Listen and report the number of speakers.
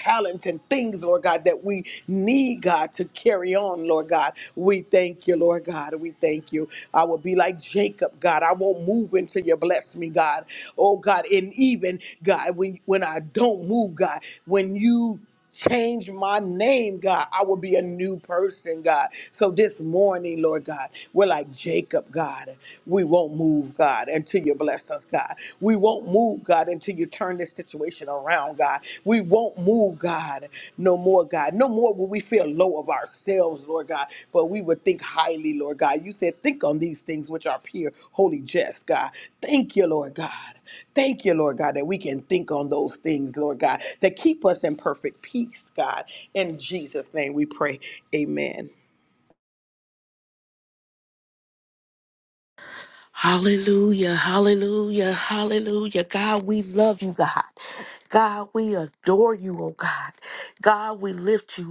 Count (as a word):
two